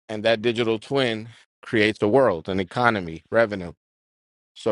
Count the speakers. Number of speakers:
one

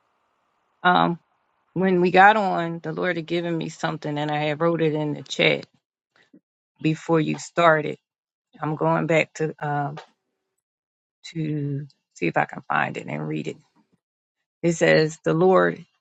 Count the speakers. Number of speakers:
one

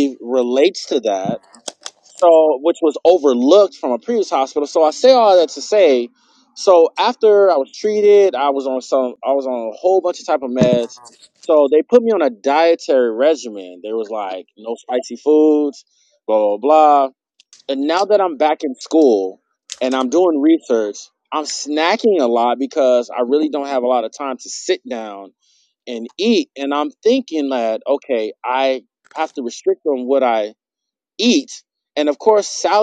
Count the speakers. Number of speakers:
one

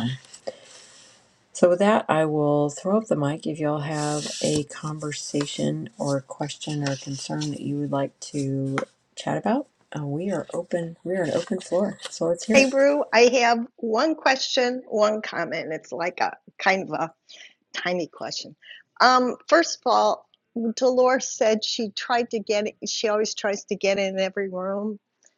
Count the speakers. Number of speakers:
two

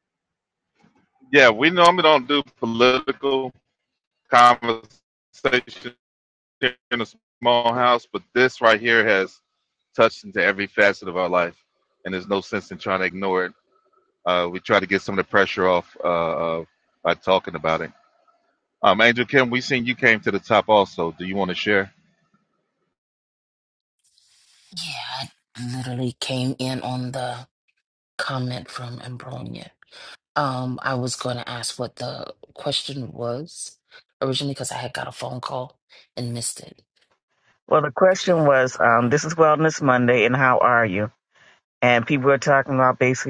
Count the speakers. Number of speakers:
three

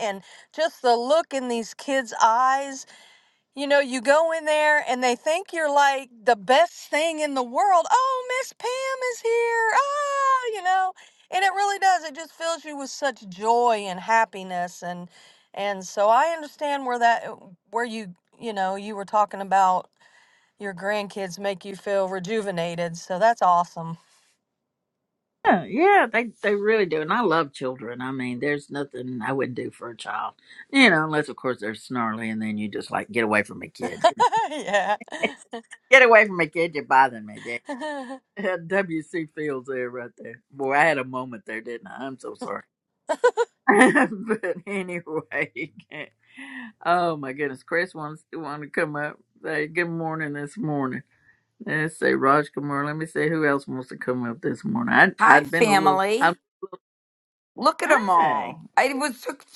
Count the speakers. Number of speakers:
three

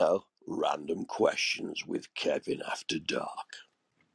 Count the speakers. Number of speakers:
one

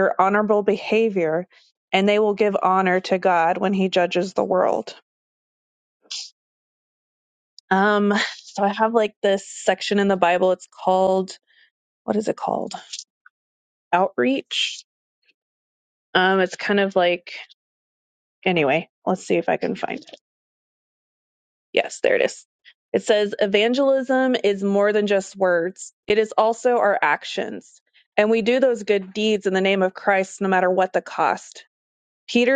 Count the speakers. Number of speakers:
one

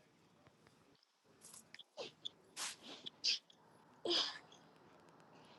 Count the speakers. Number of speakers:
zero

